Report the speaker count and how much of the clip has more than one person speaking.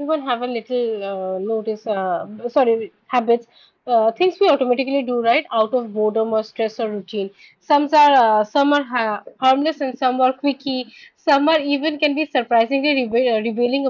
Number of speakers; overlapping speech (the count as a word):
one, no overlap